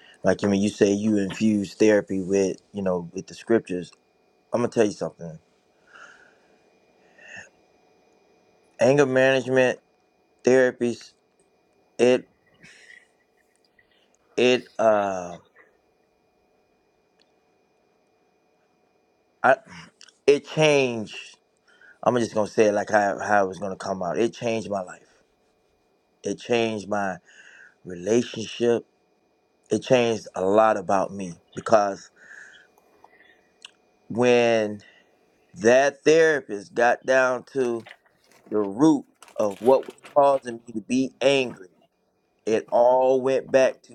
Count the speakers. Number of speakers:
1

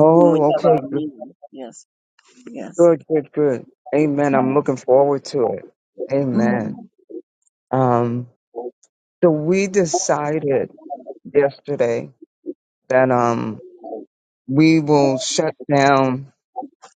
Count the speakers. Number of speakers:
2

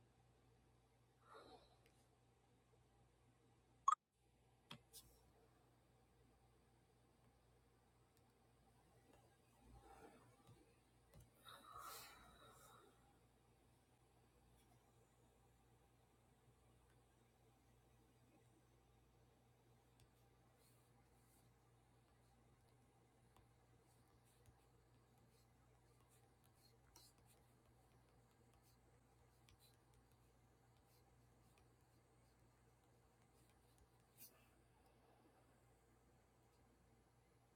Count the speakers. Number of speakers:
0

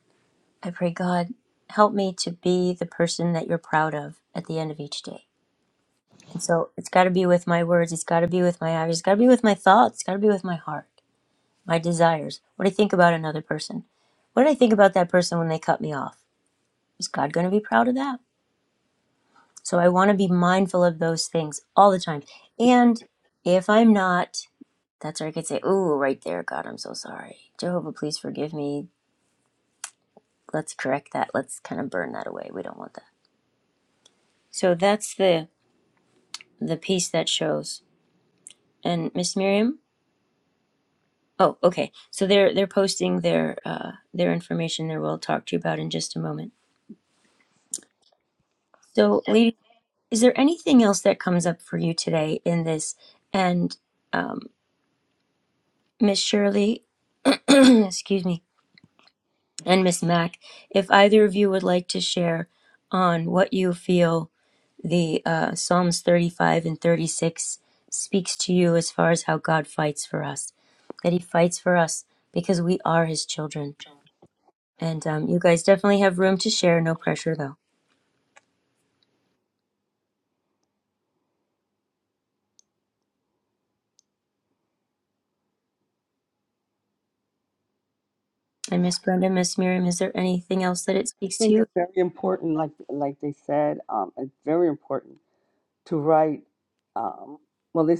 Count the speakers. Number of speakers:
2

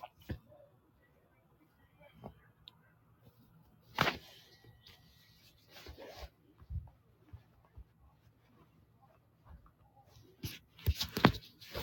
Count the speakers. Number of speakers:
0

